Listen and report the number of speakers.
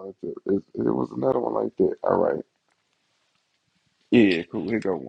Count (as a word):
one